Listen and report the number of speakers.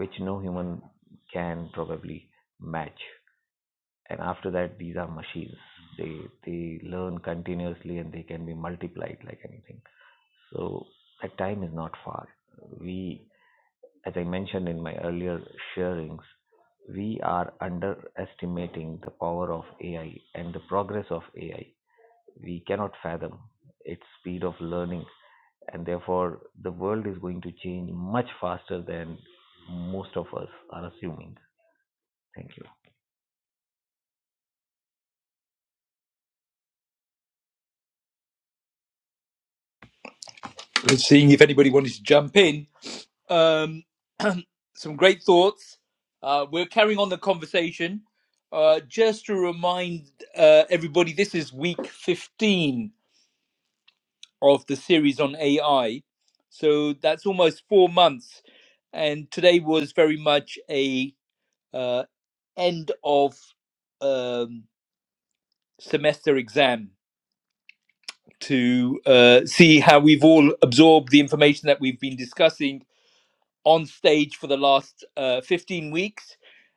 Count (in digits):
2